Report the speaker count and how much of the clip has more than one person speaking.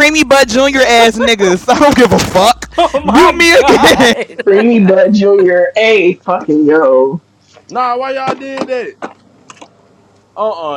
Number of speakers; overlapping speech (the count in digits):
4, about 12%